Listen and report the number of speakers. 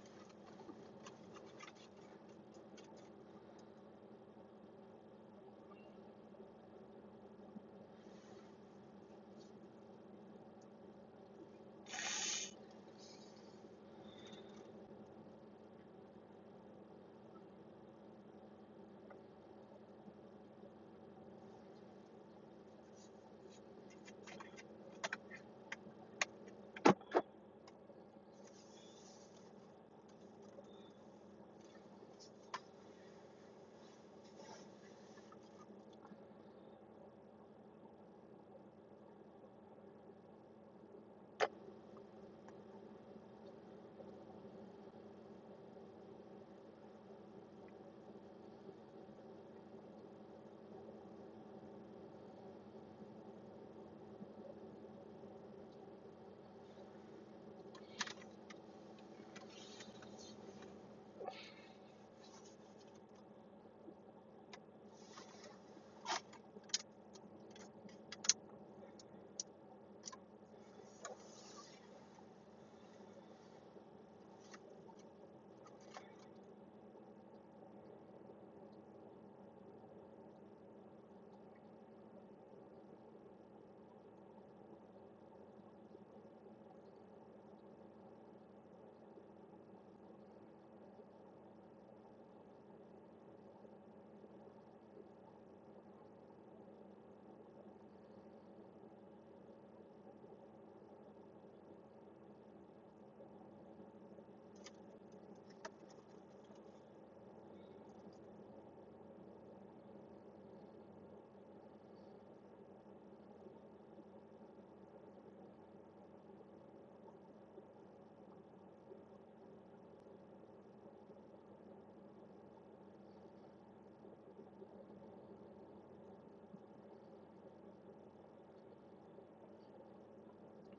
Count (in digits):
0